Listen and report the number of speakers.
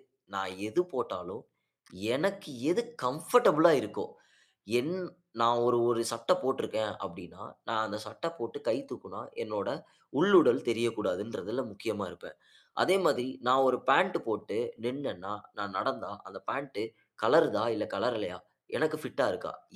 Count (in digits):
1